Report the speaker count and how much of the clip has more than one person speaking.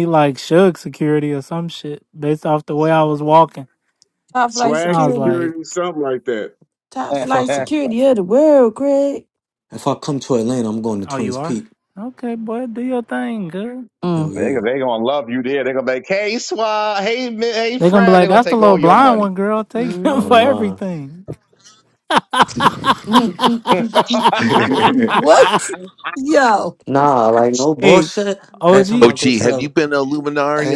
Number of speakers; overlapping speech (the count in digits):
6, about 21%